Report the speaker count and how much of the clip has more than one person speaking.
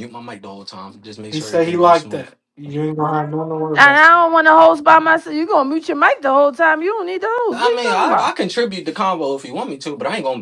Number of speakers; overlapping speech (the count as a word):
three, about 18%